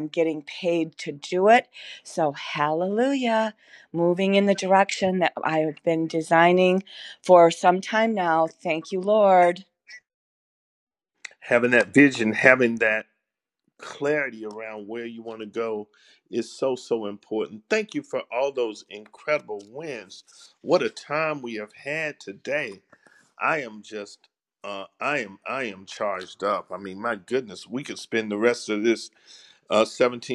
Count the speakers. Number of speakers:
two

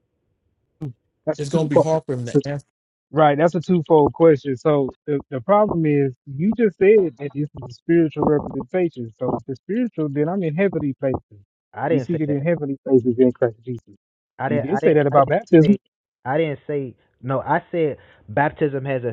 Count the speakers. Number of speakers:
three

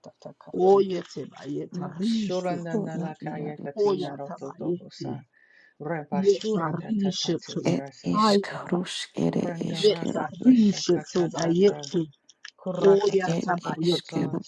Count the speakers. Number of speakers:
three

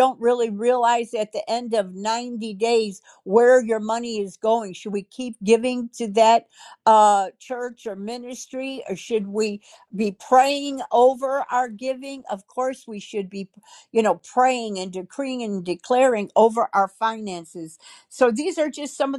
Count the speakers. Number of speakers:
one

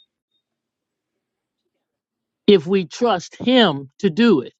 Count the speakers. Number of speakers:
one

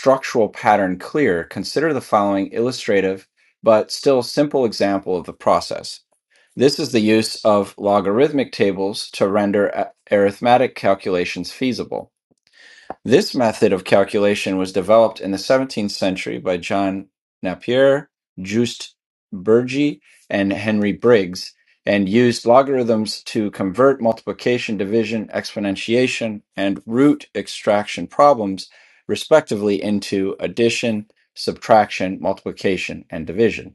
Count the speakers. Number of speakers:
one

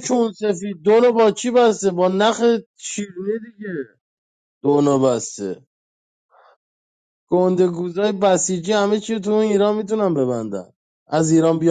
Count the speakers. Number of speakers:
one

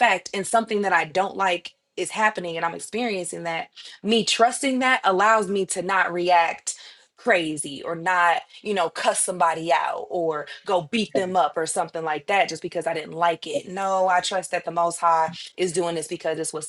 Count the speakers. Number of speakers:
one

